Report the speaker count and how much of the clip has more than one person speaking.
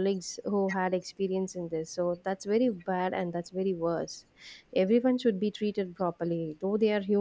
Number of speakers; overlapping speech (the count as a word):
one, no overlap